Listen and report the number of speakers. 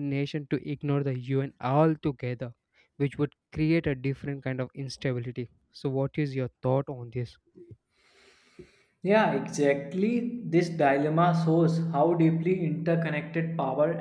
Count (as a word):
two